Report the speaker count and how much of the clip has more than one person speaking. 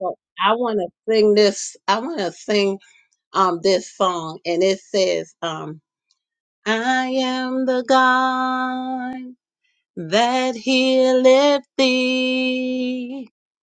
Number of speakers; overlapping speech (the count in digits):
1, no overlap